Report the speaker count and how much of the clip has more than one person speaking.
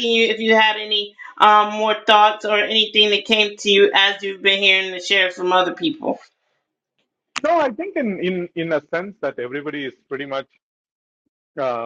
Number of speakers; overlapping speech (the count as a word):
two, no overlap